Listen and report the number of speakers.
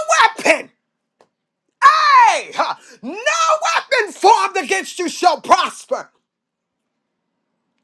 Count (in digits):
1